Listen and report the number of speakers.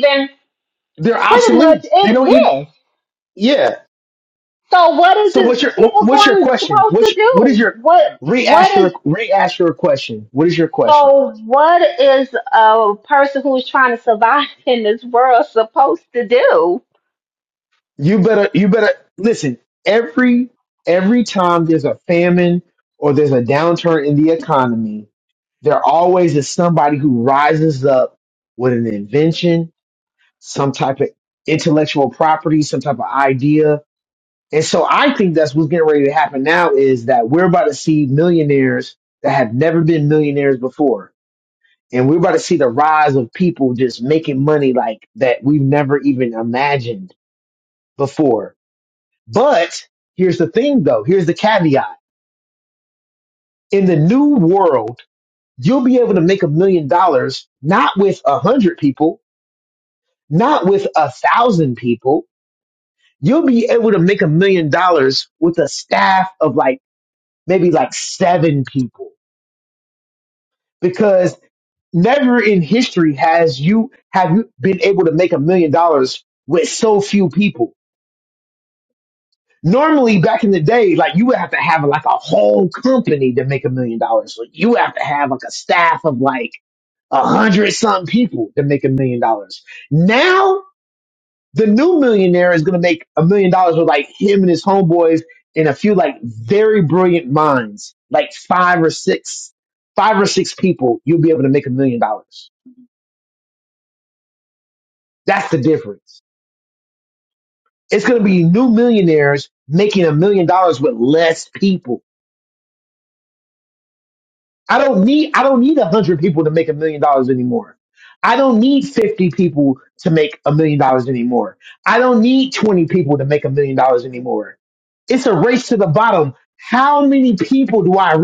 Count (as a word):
two